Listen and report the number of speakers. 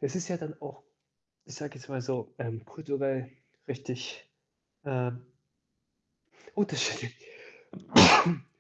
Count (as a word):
one